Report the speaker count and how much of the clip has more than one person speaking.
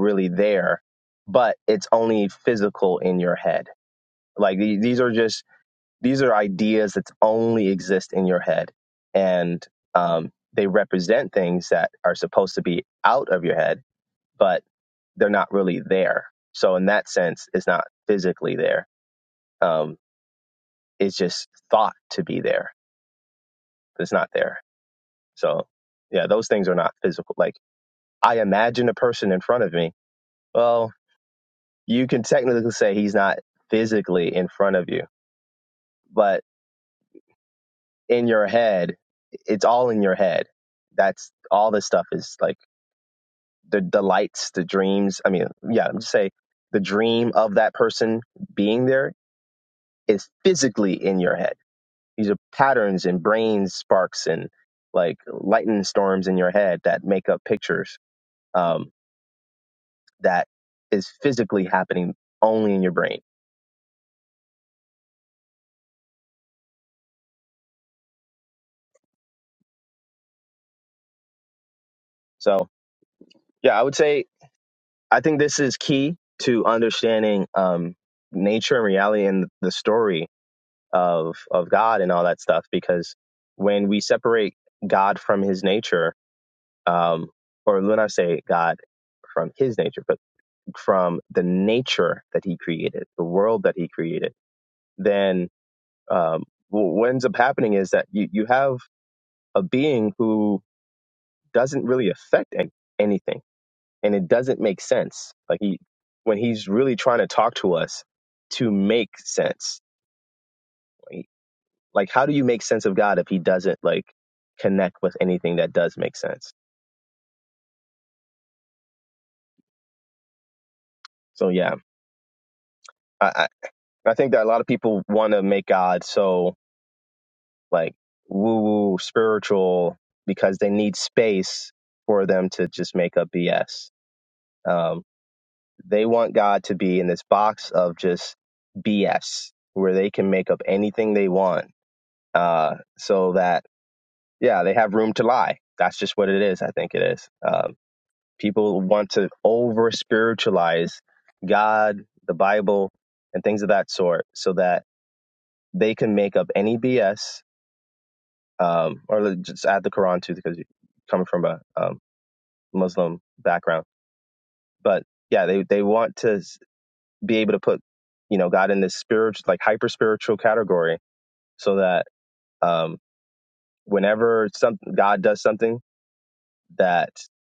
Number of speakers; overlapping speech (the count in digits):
1, no overlap